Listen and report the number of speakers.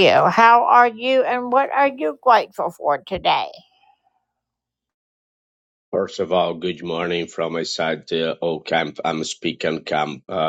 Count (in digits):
2